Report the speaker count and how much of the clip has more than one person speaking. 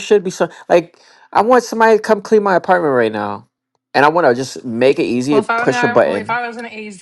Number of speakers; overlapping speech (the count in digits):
2, about 8%